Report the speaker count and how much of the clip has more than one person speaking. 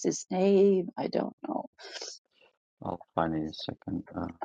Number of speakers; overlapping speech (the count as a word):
two, no overlap